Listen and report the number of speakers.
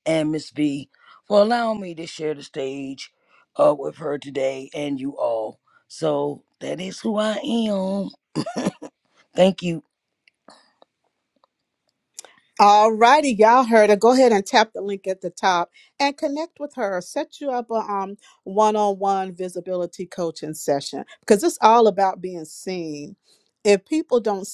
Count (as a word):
two